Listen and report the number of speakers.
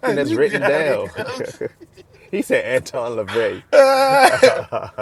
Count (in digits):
2